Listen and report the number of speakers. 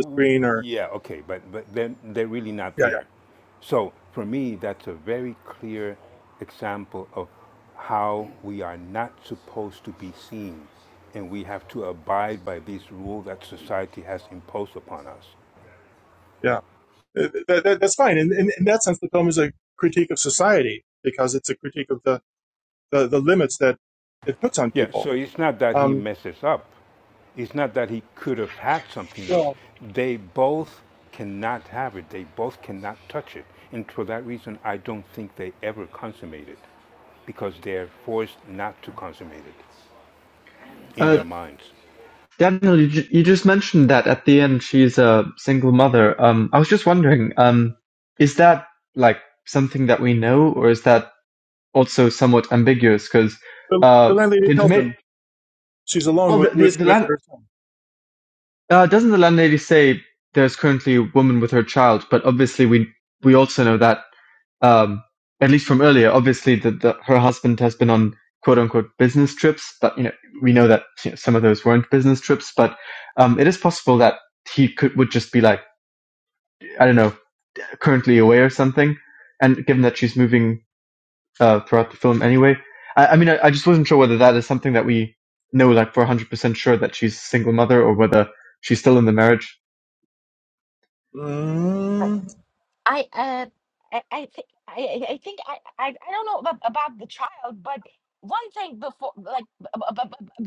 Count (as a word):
four